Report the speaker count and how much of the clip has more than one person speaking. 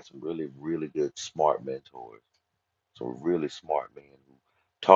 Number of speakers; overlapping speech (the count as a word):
one, no overlap